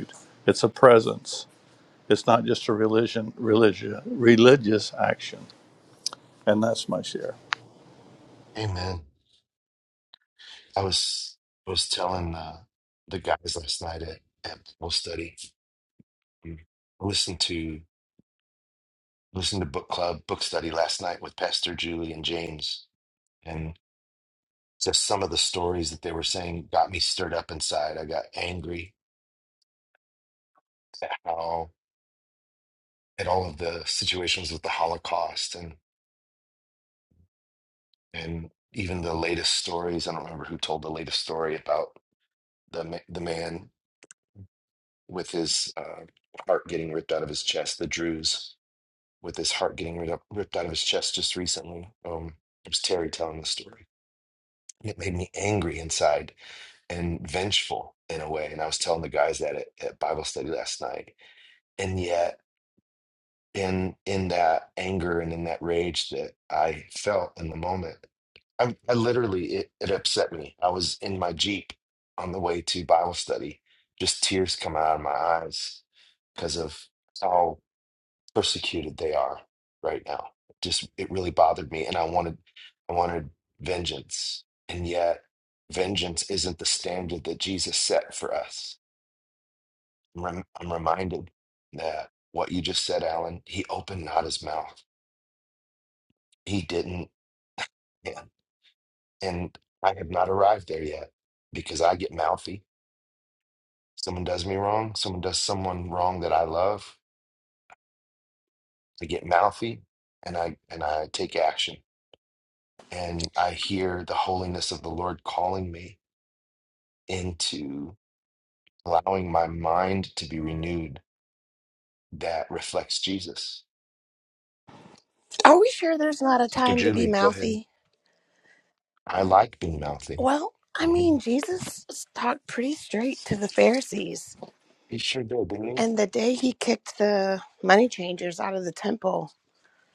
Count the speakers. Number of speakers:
three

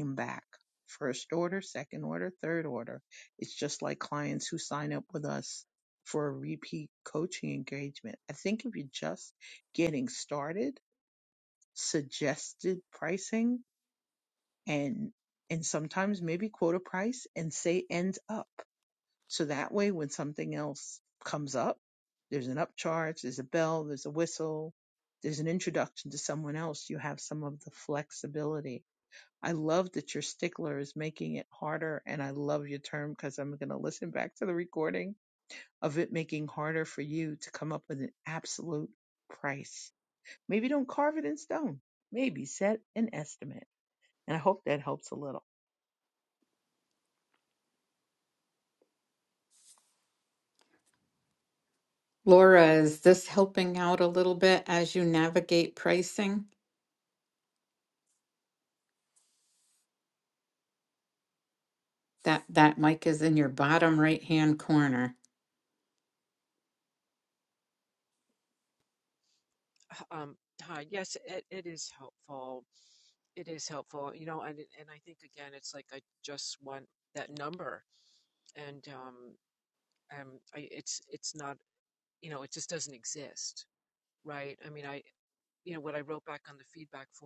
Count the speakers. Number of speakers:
three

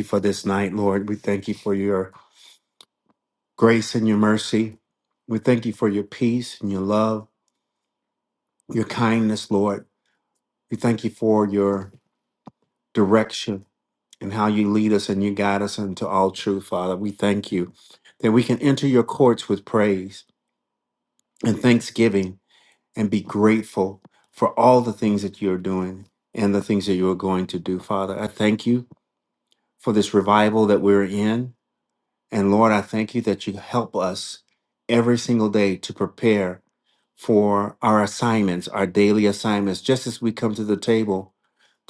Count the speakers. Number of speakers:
one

